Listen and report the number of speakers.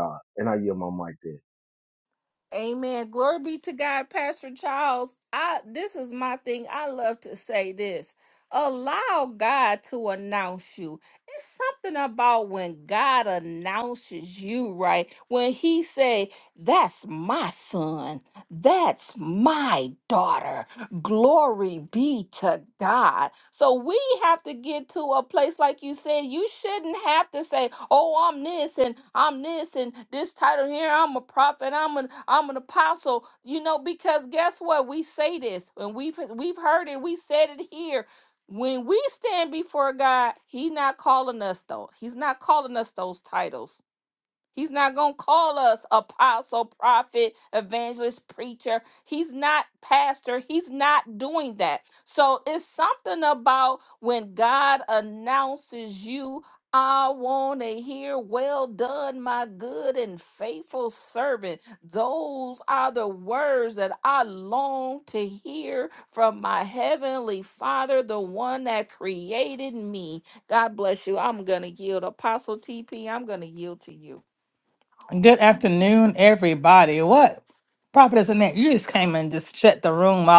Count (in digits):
3